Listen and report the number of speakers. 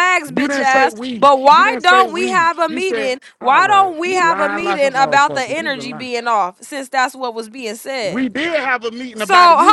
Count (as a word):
two